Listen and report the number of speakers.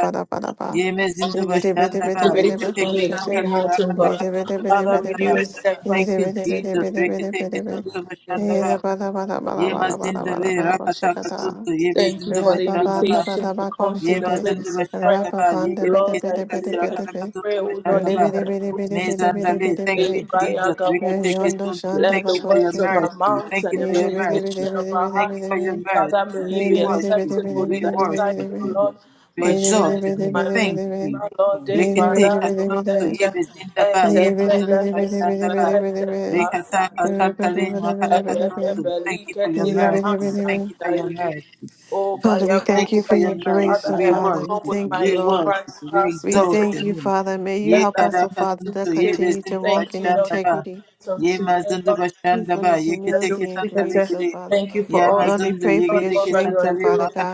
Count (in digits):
3